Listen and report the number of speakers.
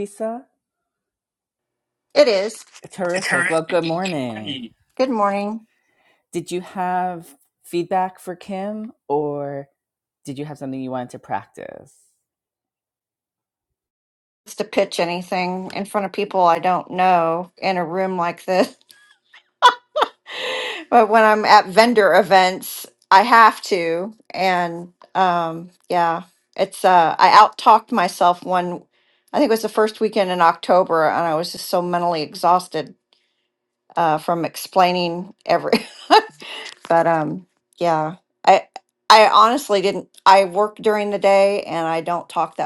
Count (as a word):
two